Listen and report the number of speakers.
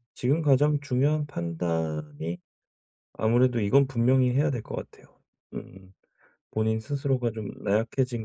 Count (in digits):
1